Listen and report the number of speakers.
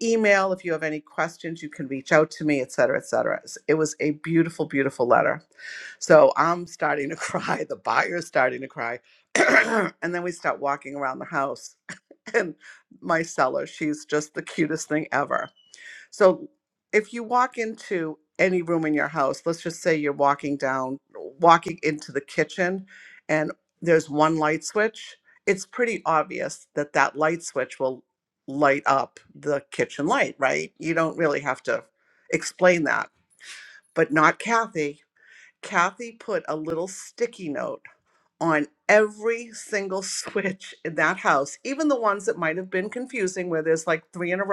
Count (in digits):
1